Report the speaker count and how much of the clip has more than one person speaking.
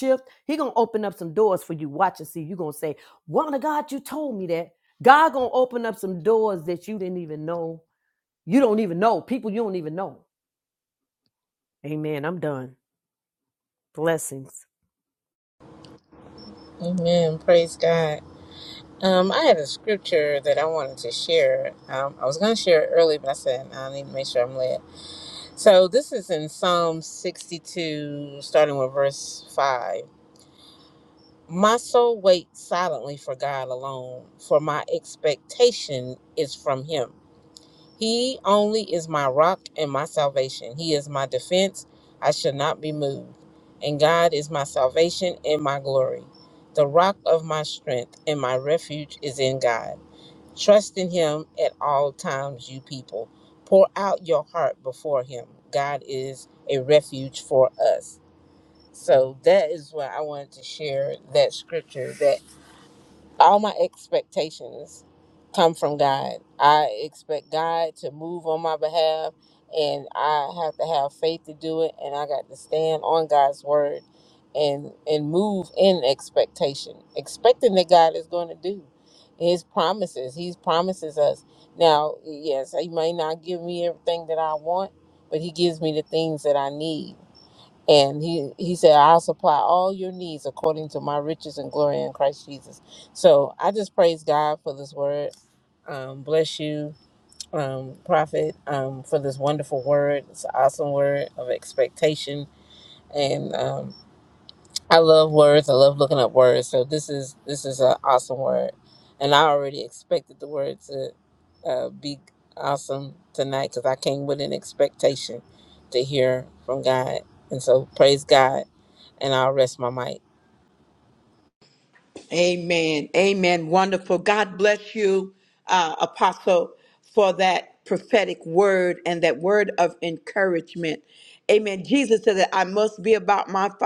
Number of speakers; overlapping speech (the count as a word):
three, no overlap